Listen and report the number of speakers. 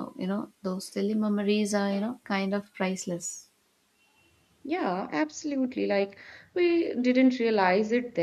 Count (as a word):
two